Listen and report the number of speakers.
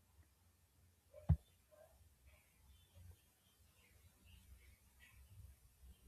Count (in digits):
0